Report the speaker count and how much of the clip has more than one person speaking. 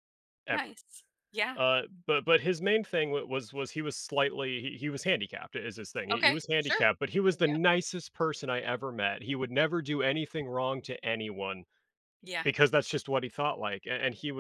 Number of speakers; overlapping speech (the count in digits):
2, about 7%